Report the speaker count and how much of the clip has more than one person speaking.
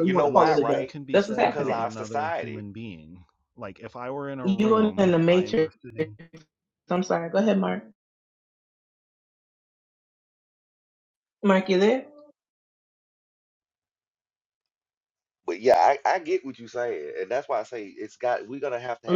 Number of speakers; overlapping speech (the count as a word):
three, about 21%